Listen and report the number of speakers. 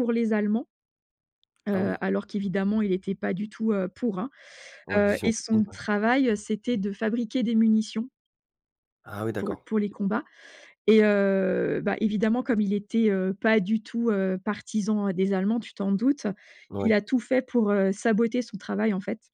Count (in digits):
2